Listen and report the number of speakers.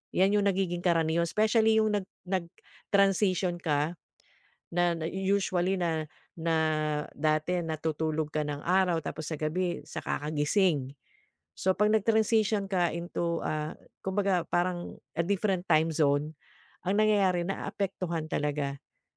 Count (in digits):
1